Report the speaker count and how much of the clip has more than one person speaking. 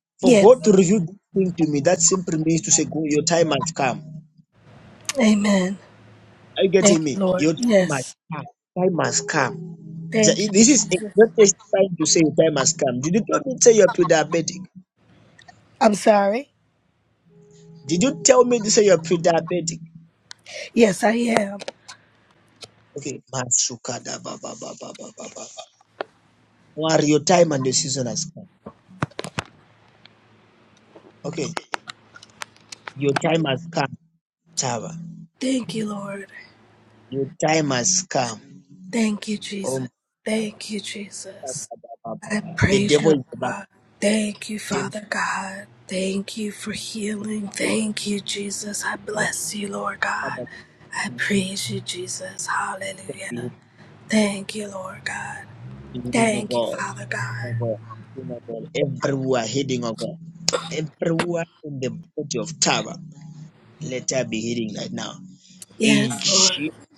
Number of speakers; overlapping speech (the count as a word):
two, about 9%